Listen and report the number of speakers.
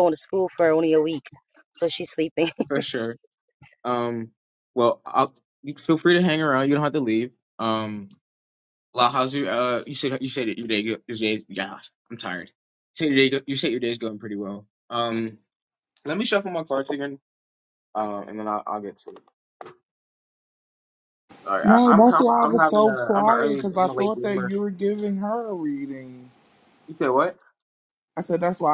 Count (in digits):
3